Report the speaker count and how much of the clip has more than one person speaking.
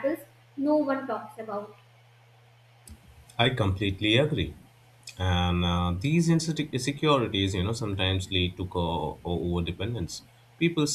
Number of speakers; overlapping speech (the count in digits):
2, no overlap